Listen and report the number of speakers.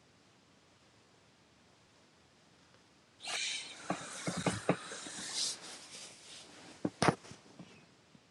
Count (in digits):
0